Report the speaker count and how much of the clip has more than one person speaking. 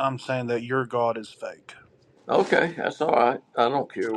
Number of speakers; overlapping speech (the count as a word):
two, no overlap